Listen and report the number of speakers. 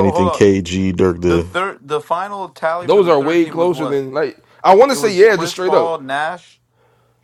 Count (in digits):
3